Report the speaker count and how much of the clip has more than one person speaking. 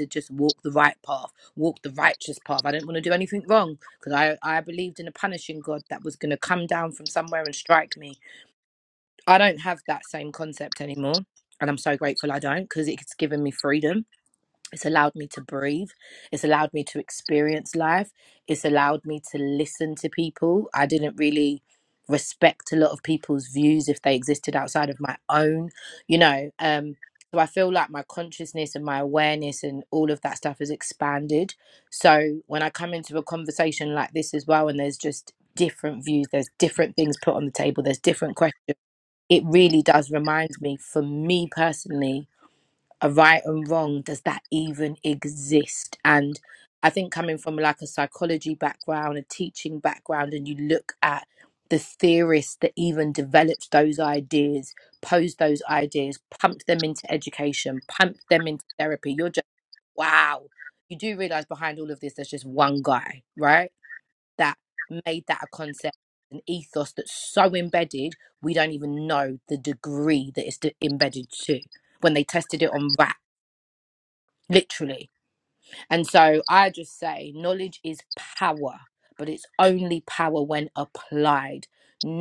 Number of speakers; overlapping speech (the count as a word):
one, no overlap